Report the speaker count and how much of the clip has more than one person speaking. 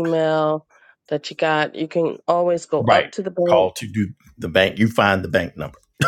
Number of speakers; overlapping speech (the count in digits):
2, about 11%